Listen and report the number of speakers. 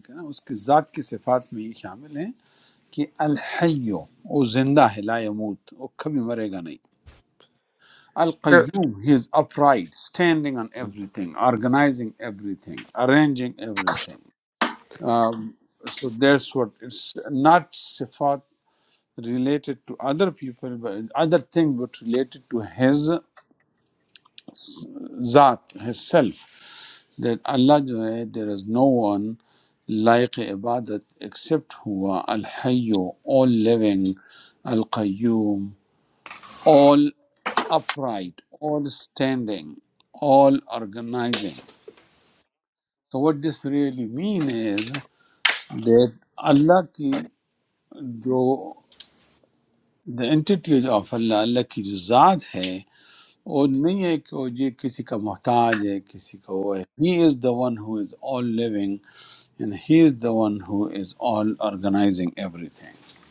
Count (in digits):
1